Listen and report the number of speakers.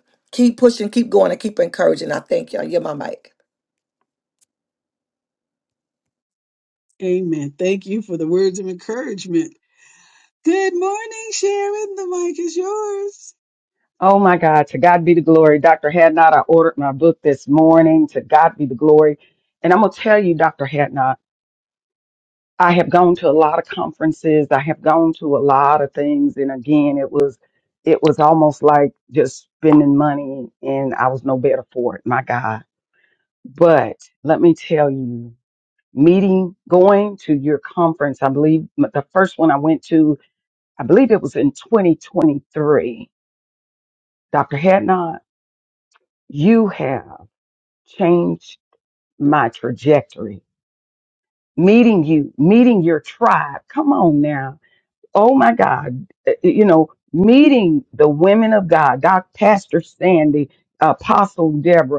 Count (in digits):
3